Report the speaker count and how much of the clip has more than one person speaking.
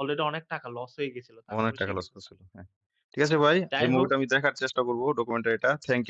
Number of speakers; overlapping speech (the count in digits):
2, about 15%